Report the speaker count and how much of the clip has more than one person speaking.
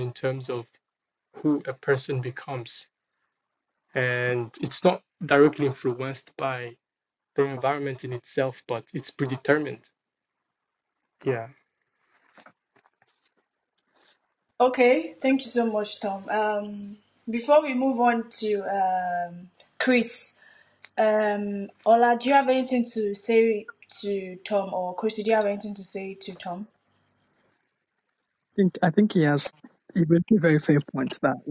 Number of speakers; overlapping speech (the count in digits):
3, no overlap